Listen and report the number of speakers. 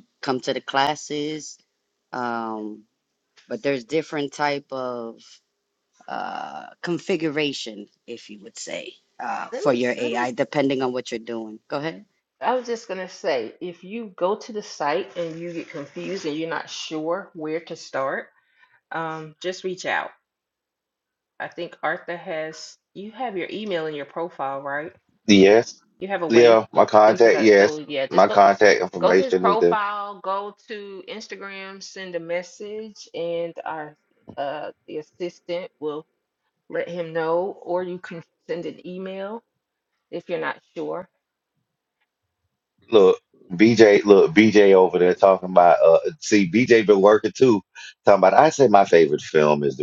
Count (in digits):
3